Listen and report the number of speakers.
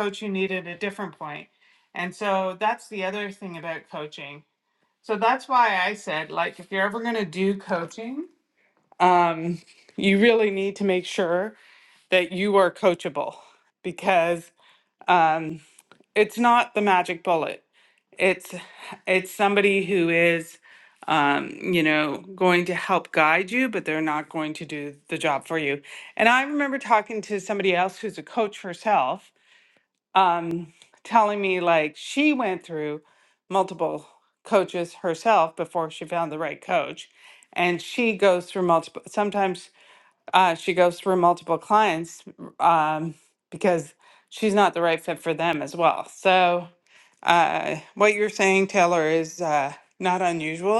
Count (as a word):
one